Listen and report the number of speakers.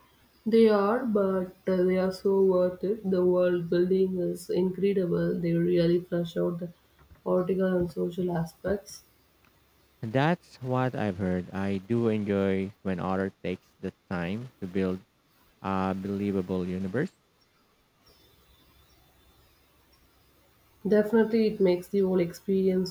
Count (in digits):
2